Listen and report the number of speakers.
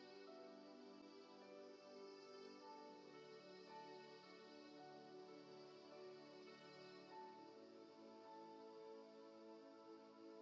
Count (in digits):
0